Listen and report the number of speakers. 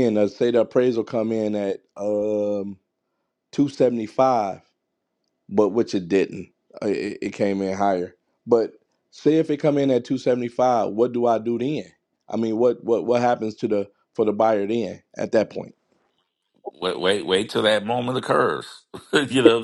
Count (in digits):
2